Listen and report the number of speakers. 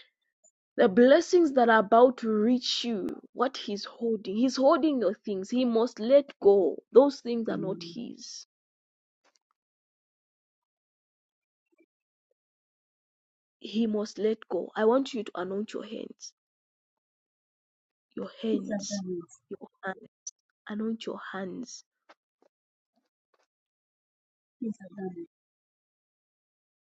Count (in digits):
2